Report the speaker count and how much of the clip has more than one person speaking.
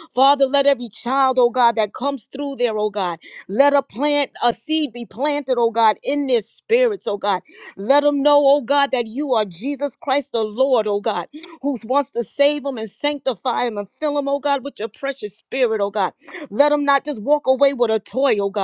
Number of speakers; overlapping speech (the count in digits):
1, no overlap